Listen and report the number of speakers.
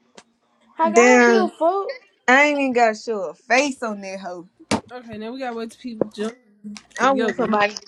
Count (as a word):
three